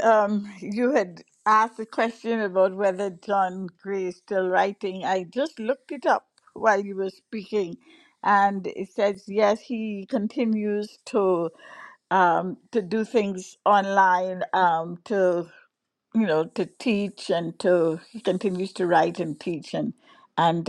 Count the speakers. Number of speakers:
one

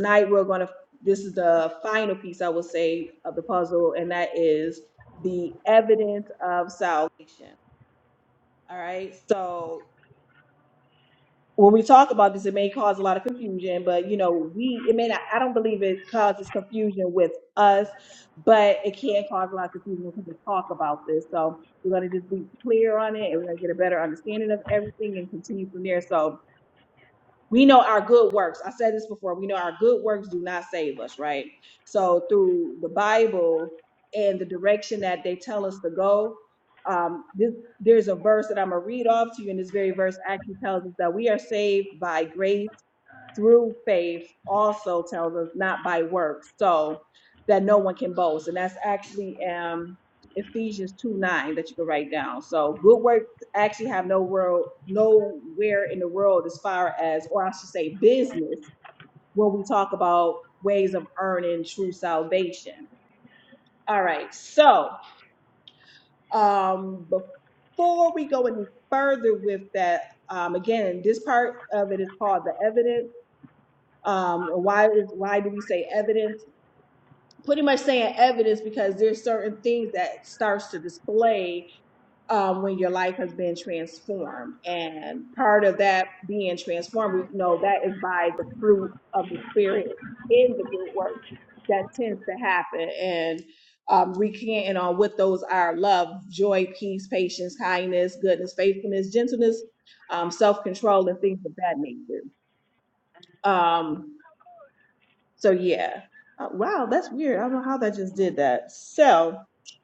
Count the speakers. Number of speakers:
one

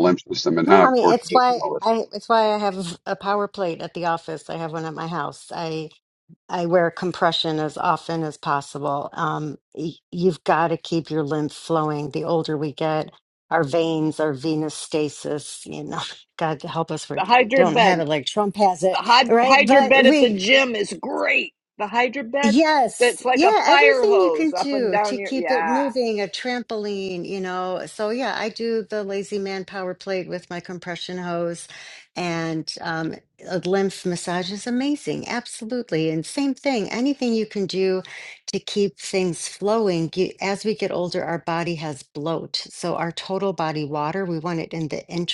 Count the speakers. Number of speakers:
three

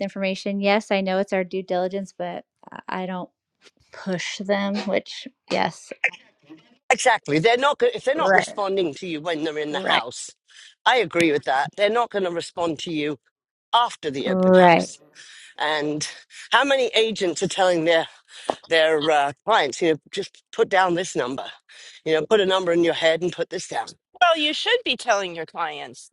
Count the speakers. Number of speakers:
three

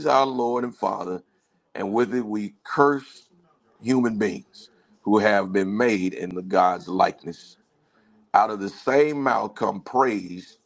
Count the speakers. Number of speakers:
one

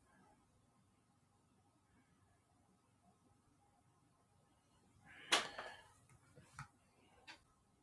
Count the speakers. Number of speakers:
zero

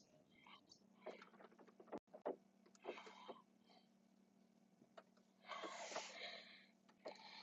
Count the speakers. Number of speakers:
zero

